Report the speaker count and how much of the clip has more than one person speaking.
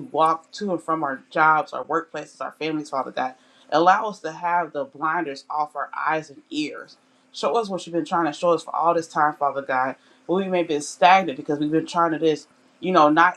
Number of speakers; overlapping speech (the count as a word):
one, no overlap